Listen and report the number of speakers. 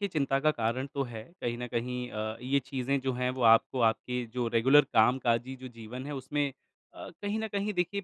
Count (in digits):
1